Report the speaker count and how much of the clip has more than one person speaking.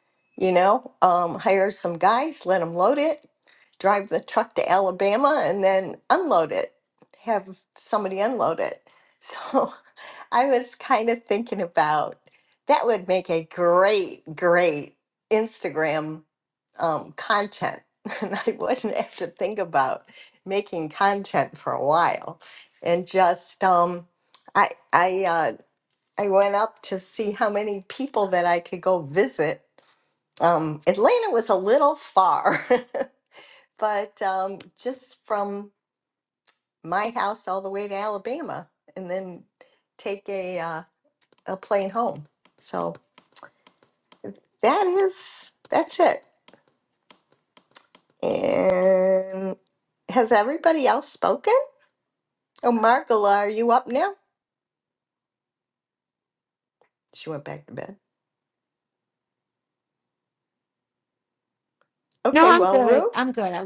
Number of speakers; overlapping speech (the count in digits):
2, about 1%